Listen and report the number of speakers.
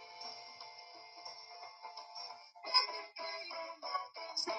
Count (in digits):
0